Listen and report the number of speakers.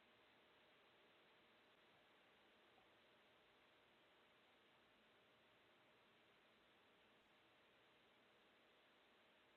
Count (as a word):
zero